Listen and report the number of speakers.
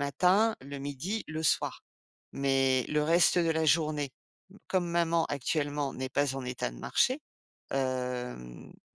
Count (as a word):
one